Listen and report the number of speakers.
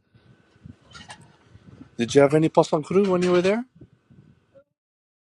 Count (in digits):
1